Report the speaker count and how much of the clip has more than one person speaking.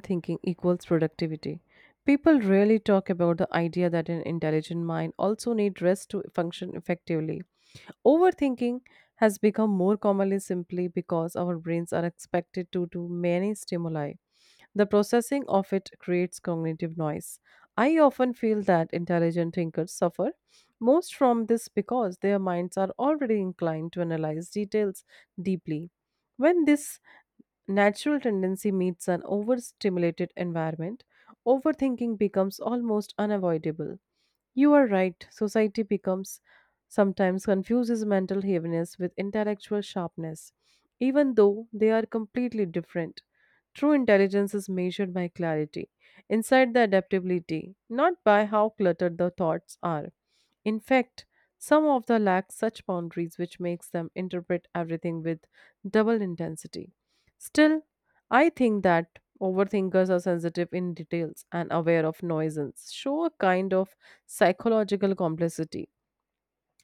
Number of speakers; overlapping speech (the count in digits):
1, no overlap